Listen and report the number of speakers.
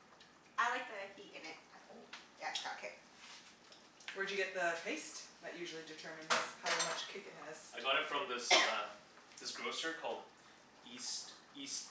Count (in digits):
3